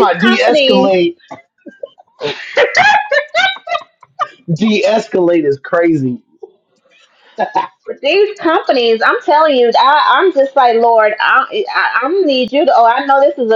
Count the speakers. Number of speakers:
two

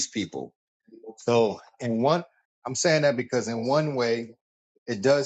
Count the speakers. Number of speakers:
one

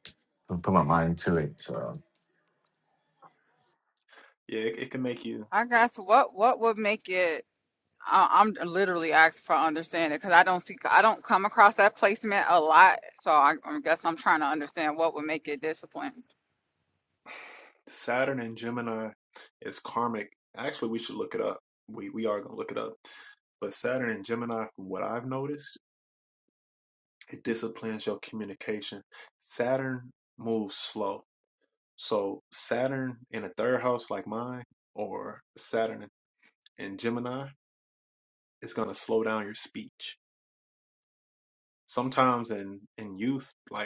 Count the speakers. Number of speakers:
three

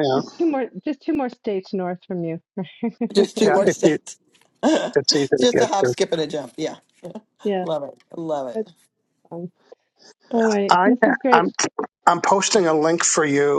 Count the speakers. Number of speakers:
three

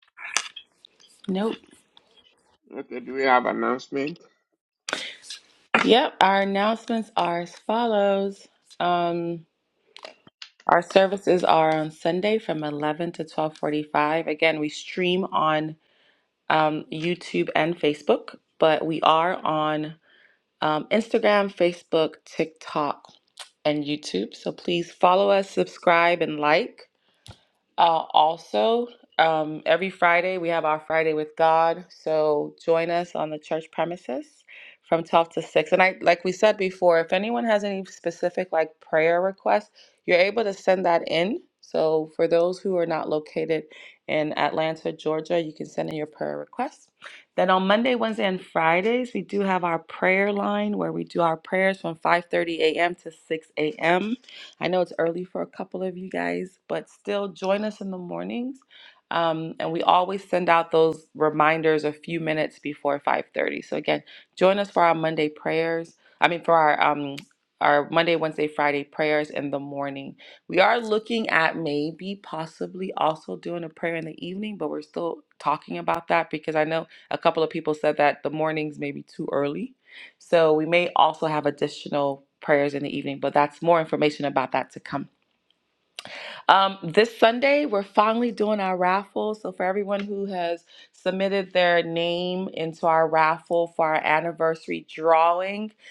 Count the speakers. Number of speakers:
two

